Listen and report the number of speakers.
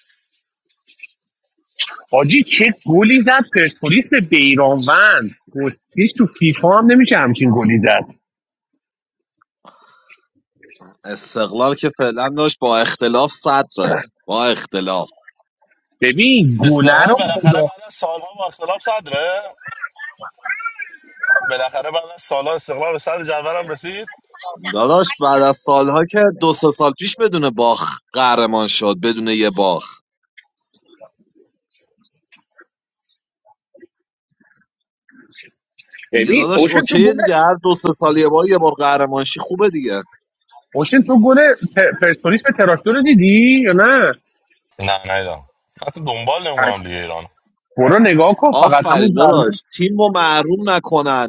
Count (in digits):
3